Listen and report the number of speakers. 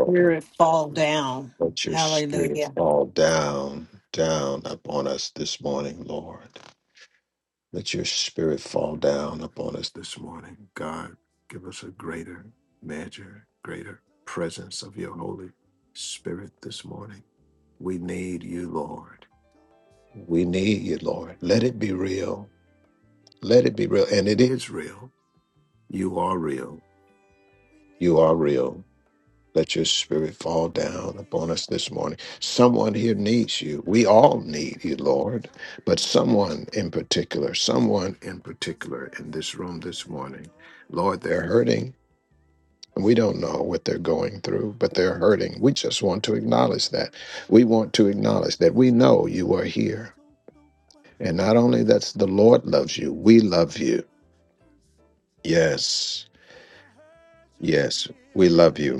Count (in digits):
3